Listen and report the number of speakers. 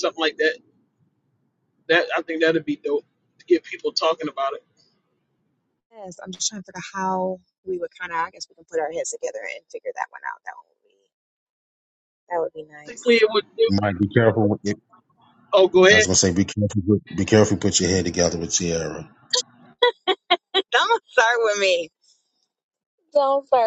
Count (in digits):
3